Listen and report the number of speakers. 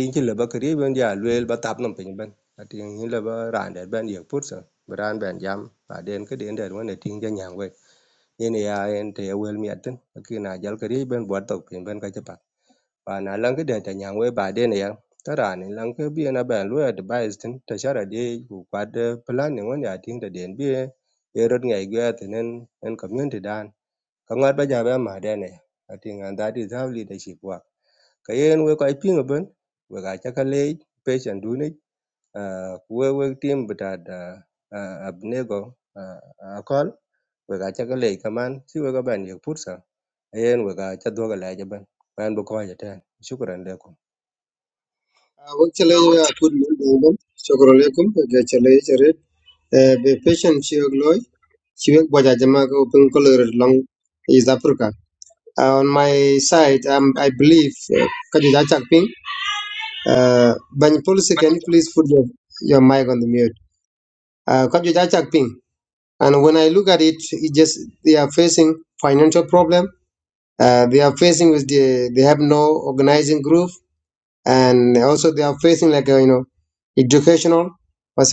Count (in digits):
2